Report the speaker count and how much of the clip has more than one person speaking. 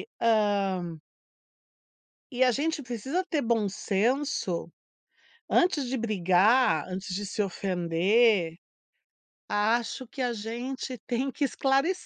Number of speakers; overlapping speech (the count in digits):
1, no overlap